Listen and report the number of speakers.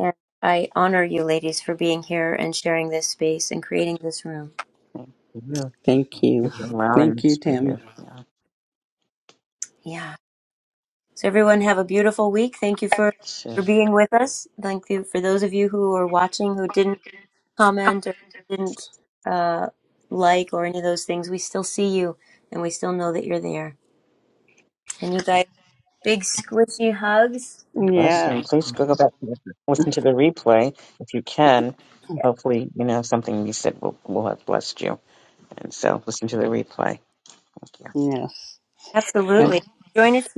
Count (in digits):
3